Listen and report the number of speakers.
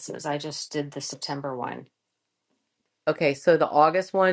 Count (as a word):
two